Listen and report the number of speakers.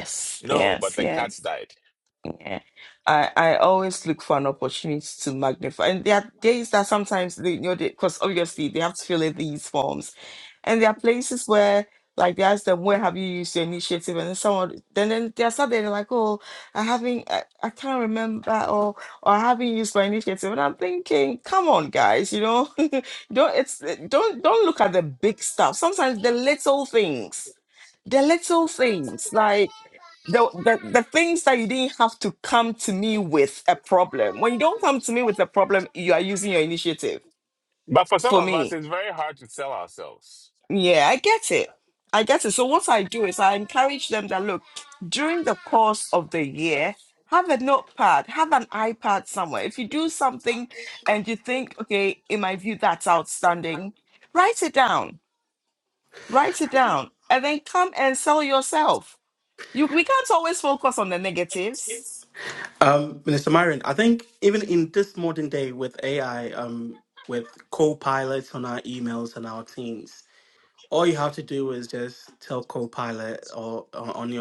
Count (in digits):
3